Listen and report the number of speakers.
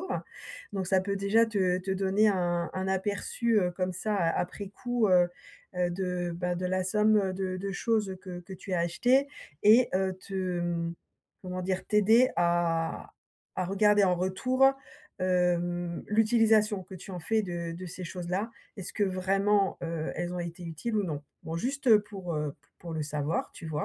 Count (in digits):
1